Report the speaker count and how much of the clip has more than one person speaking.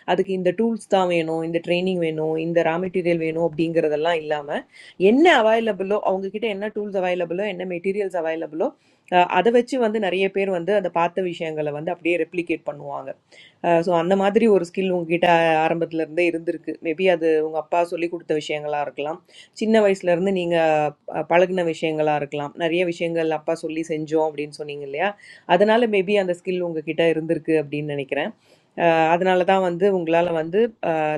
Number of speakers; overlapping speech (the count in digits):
1, no overlap